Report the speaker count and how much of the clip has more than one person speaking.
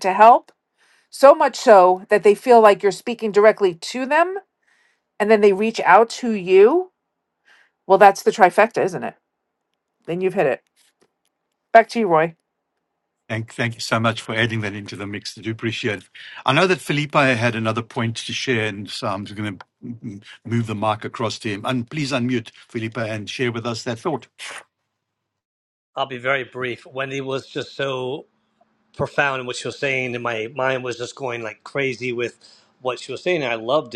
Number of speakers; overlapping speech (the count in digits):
3, no overlap